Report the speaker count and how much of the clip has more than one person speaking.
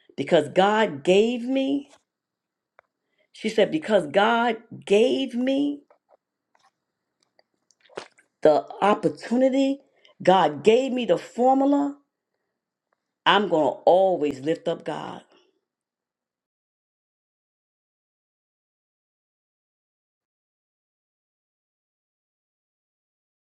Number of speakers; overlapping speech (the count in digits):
1, no overlap